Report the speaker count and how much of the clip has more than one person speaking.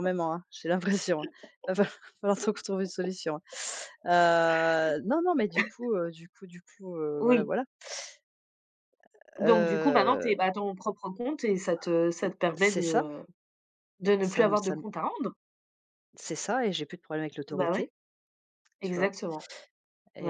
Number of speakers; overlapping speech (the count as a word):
two, about 15%